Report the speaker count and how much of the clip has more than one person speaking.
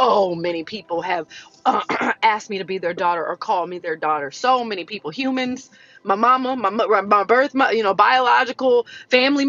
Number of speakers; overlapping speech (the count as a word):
one, no overlap